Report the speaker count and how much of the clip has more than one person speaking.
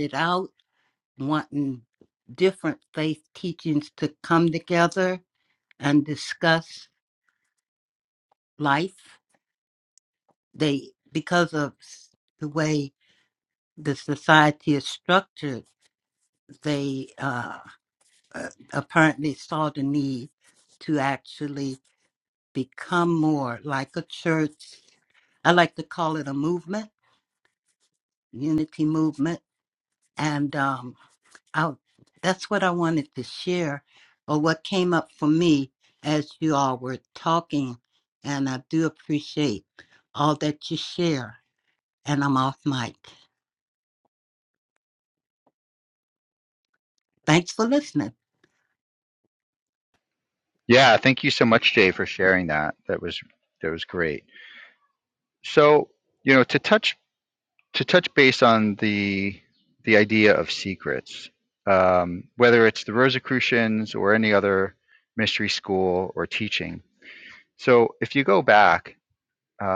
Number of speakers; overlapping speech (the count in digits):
2, no overlap